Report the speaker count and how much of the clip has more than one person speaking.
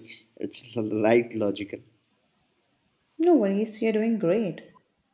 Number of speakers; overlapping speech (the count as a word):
two, no overlap